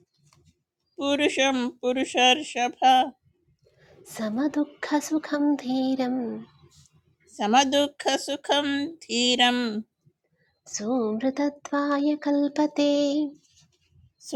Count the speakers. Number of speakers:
two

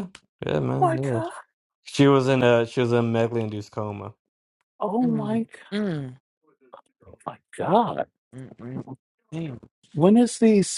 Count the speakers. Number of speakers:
three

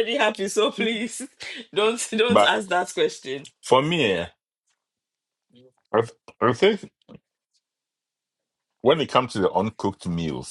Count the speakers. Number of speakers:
two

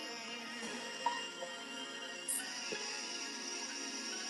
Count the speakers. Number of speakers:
zero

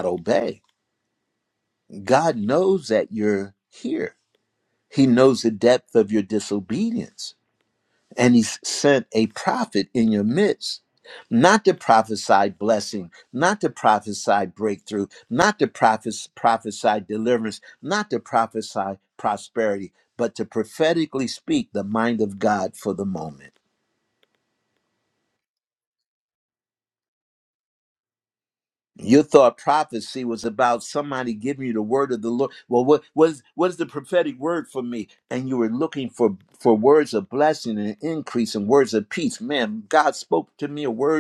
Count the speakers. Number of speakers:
one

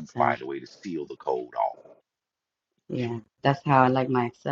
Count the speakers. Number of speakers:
two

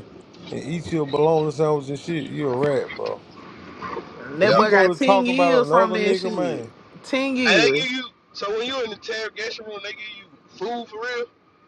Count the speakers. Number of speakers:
three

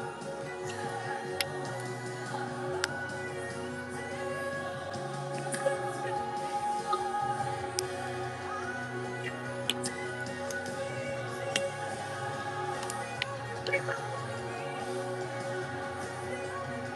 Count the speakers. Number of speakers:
zero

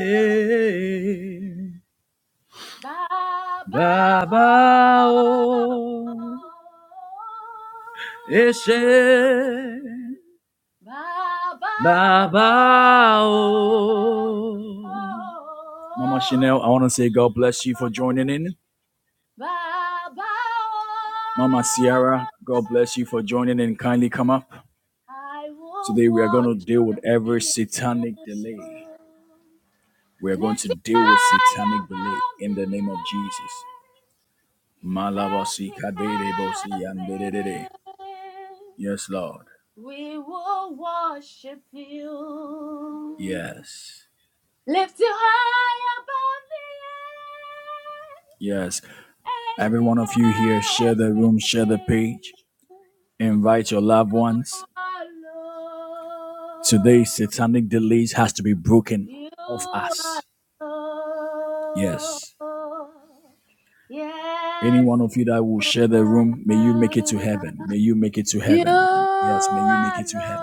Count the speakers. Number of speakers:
two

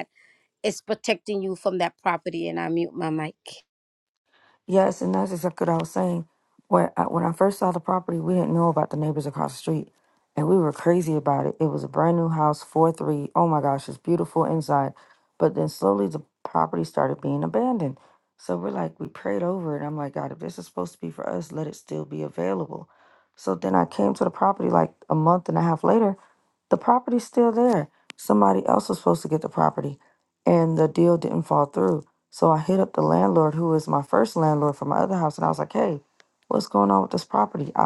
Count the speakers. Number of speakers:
two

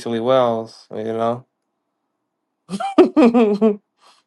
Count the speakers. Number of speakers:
one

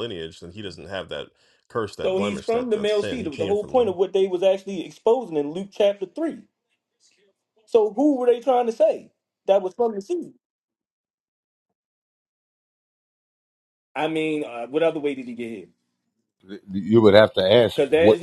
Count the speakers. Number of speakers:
three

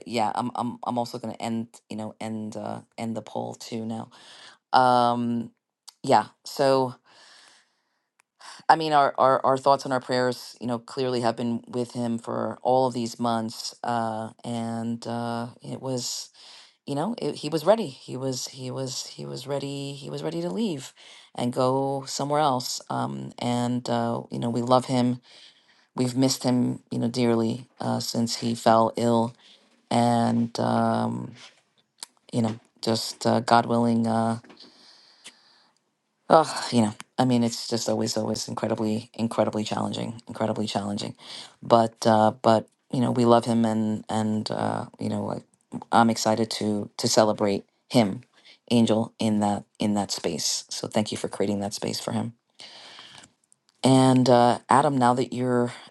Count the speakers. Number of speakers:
one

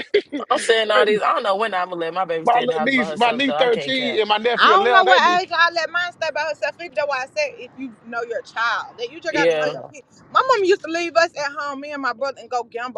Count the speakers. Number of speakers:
three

